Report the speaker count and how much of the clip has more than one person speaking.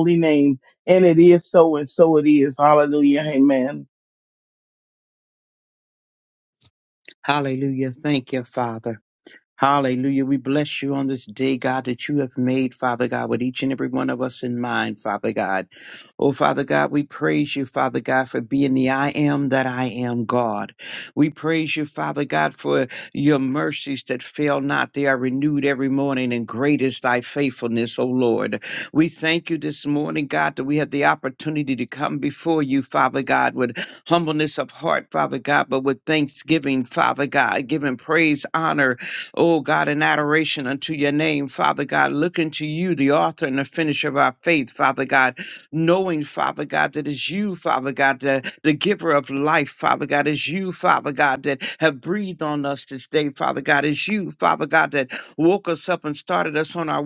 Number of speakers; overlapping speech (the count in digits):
2, no overlap